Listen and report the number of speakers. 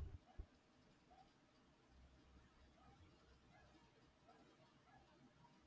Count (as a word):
zero